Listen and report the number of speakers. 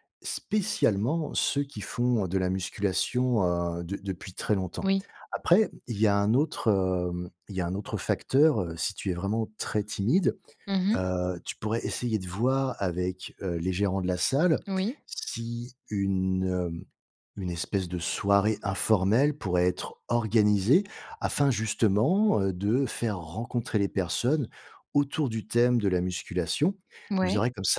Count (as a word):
two